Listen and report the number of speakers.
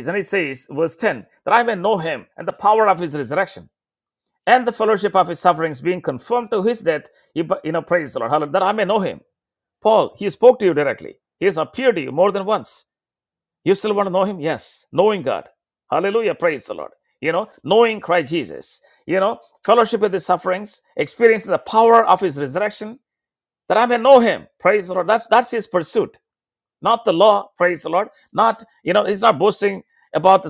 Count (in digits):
1